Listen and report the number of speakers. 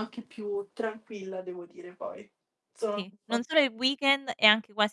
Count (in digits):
2